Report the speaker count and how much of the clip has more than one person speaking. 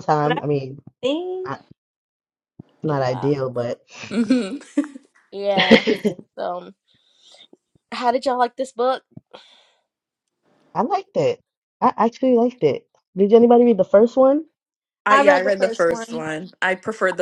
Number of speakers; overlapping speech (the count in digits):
4, about 12%